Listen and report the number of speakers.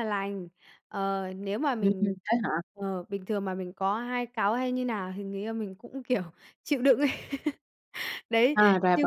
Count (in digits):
2